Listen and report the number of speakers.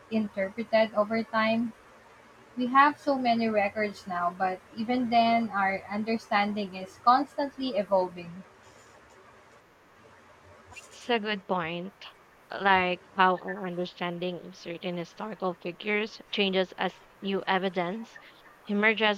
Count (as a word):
two